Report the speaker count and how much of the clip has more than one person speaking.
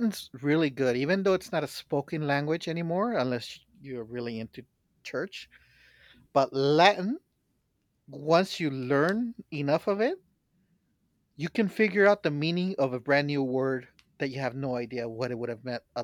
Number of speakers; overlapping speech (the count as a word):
one, no overlap